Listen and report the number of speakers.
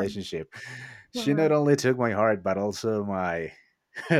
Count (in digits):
1